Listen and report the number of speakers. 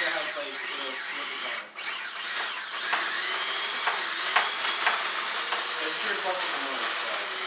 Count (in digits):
1